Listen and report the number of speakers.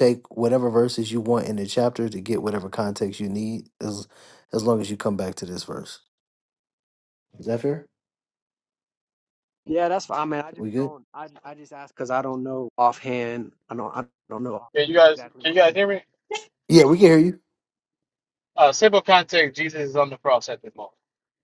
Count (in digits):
3